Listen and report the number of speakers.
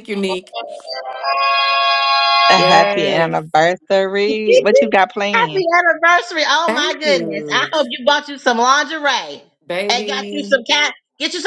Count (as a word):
three